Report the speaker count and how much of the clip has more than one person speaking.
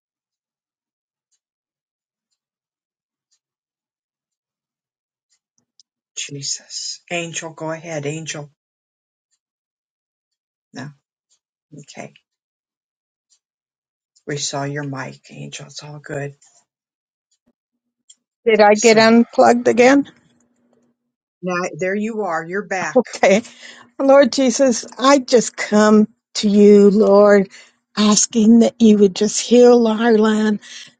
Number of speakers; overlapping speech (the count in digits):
2, about 1%